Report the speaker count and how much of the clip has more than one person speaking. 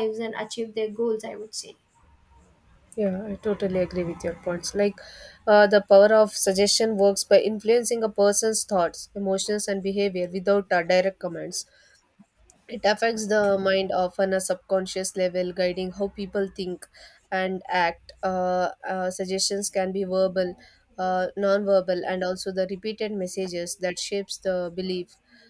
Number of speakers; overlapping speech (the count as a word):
two, no overlap